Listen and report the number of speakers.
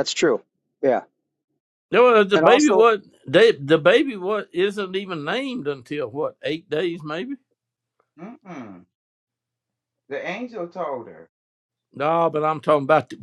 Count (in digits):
3